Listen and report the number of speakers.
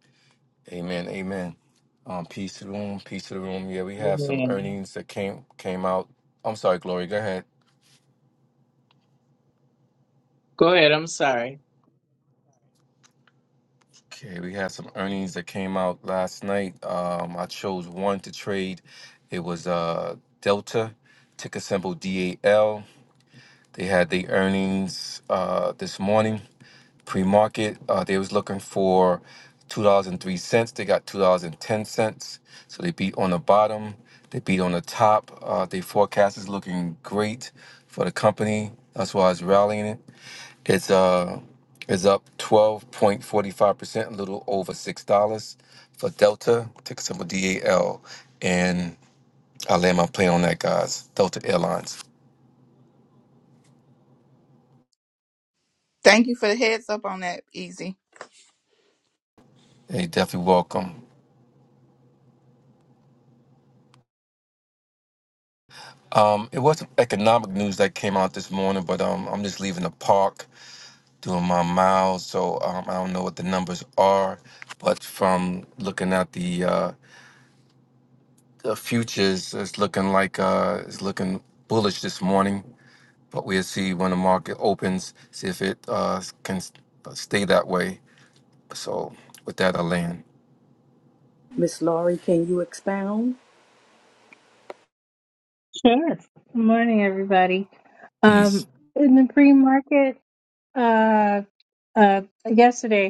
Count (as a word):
five